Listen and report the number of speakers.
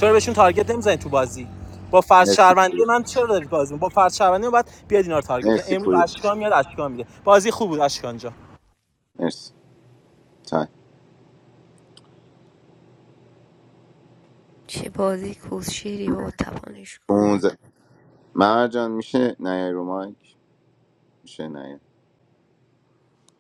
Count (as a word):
three